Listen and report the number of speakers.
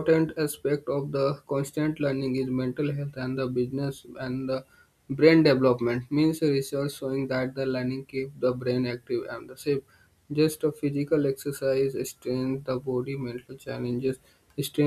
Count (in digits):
1